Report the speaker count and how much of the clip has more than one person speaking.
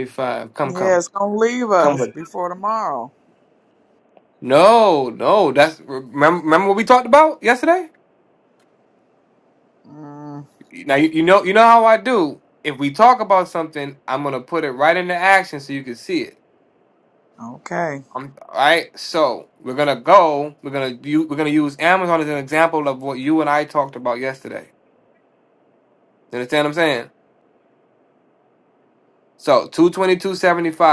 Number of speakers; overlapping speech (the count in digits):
2, about 2%